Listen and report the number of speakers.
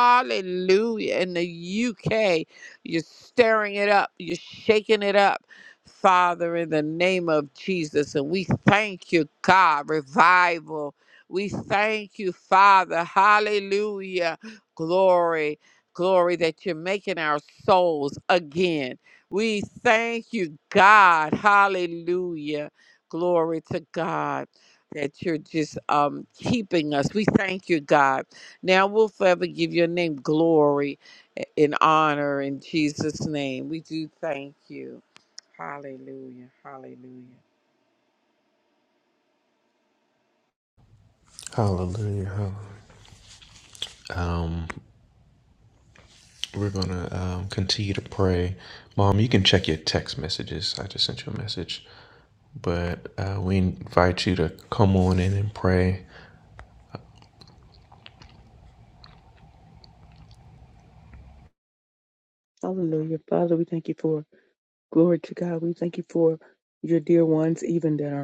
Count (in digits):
3